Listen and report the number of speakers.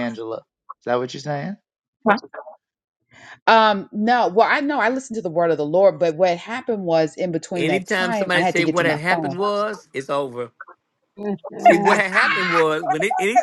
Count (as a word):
three